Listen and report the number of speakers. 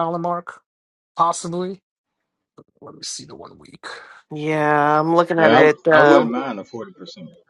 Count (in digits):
3